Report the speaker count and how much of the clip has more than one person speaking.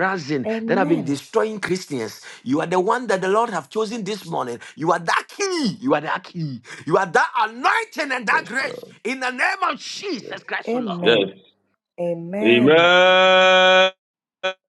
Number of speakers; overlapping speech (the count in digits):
3, about 17%